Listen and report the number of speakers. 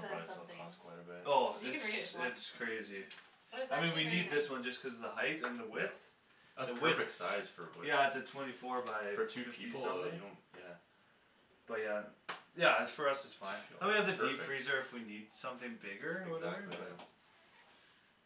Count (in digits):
3